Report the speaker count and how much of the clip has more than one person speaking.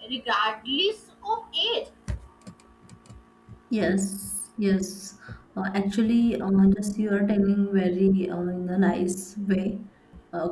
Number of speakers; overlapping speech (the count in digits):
2, no overlap